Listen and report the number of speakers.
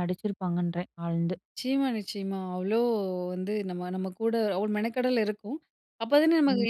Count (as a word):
two